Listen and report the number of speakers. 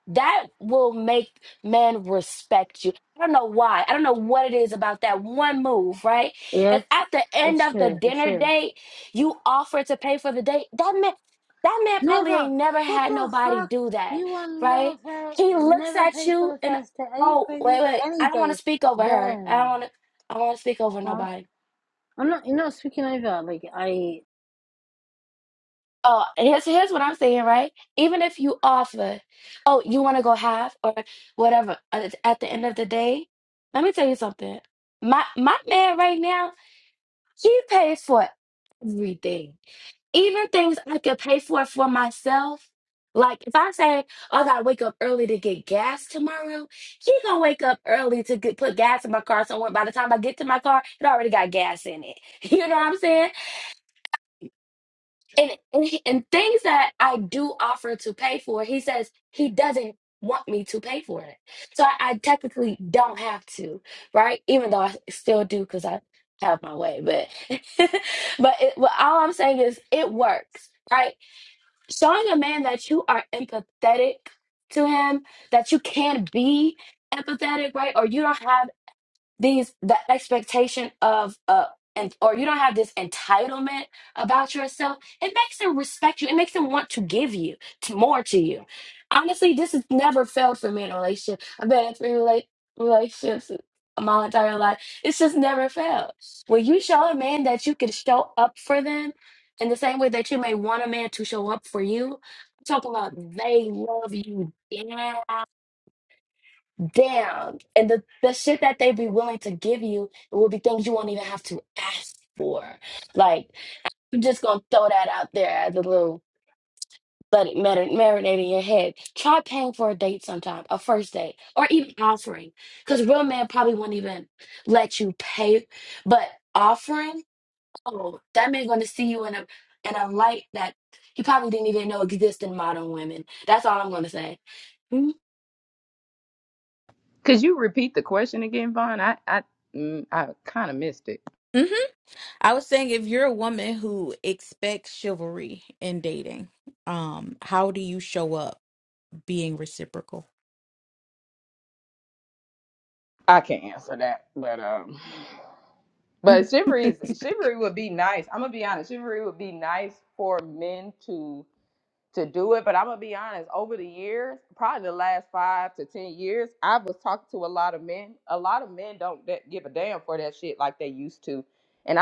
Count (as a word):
four